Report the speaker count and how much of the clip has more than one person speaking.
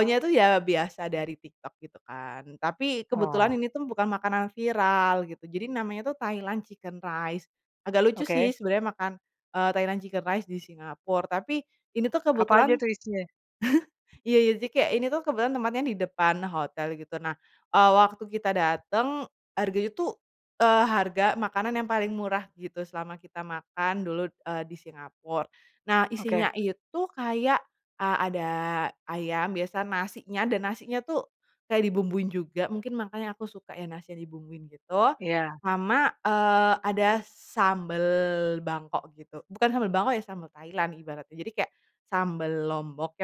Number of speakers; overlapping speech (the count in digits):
2, about 3%